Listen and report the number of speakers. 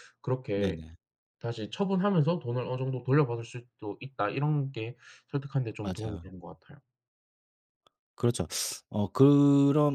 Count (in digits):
2